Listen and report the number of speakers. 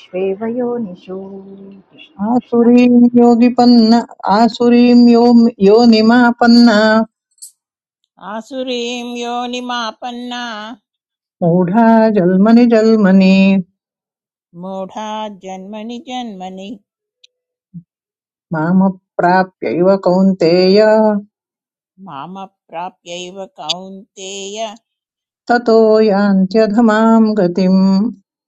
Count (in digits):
3